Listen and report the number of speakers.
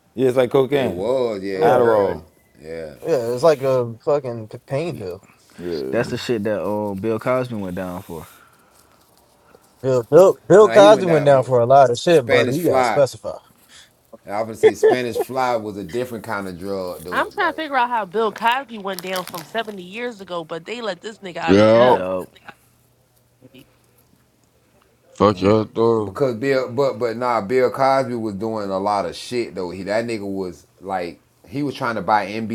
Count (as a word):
six